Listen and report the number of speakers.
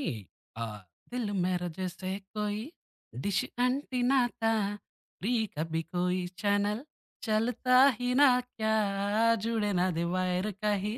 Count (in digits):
1